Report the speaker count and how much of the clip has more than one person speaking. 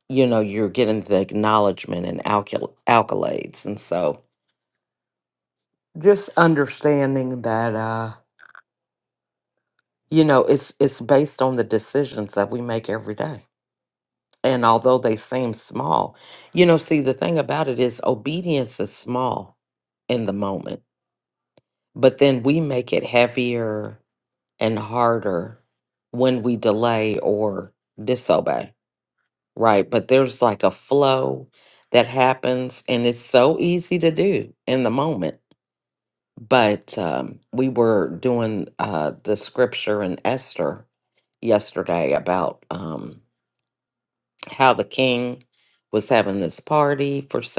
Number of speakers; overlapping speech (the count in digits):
1, no overlap